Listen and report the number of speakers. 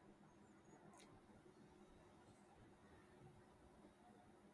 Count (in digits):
0